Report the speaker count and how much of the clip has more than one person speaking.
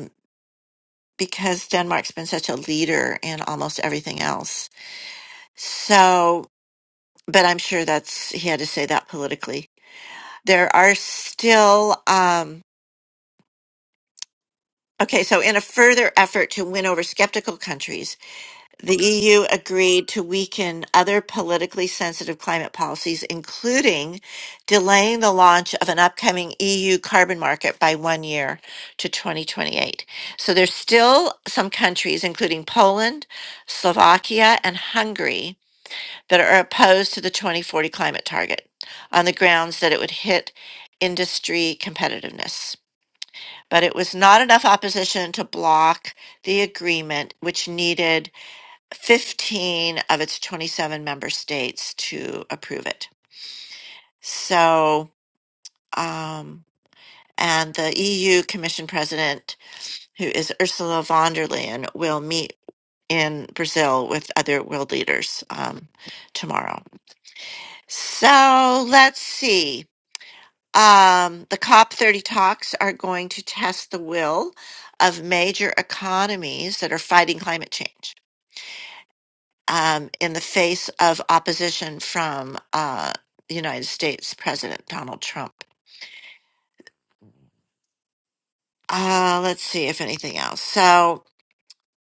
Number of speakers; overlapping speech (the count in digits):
1, no overlap